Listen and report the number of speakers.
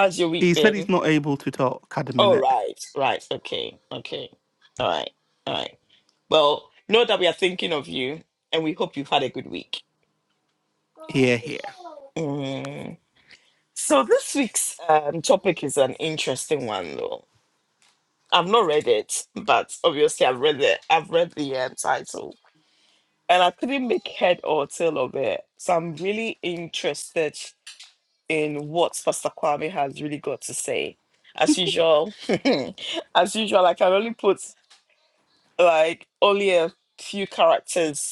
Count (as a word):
two